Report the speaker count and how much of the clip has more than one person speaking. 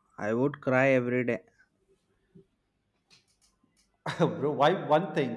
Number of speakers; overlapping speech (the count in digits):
2, no overlap